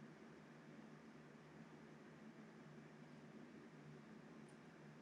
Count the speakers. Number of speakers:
zero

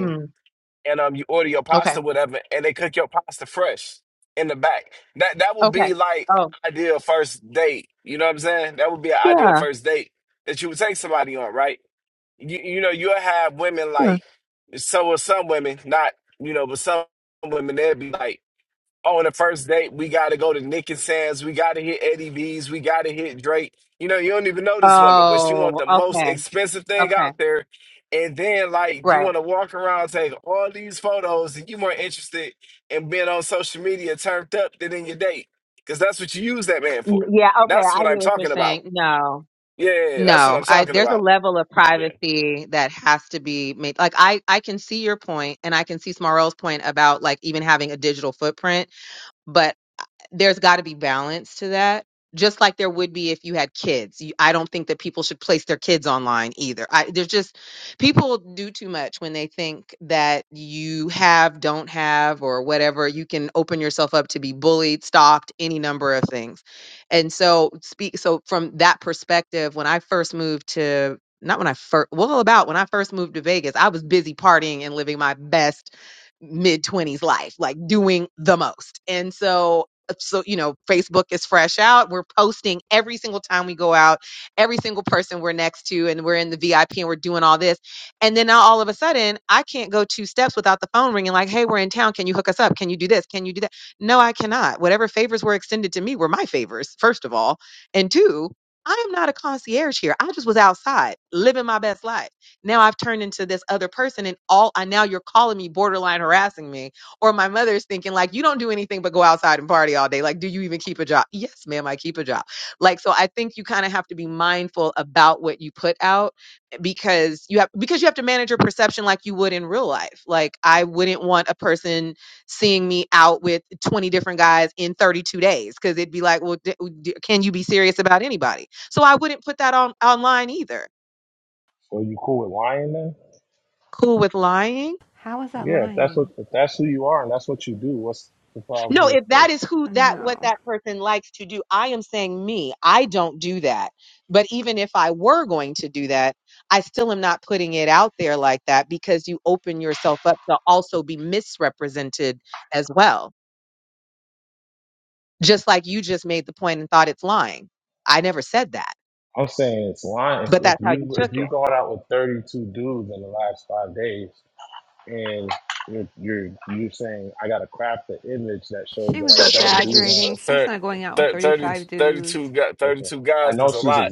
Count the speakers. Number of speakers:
four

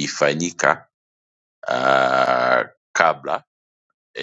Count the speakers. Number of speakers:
one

